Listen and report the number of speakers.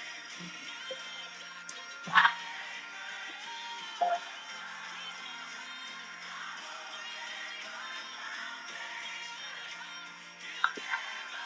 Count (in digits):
0